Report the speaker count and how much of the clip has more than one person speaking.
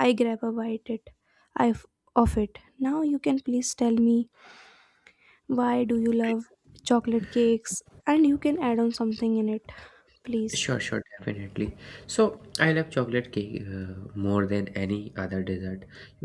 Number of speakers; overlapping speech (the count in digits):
2, no overlap